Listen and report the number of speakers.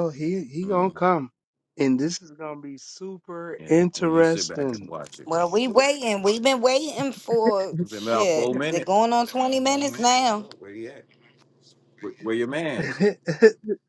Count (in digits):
3